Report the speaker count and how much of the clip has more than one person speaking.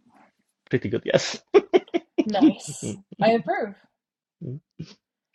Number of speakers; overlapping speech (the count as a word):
two, about 3%